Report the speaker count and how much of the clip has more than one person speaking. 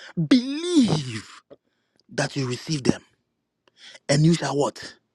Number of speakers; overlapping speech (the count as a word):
one, no overlap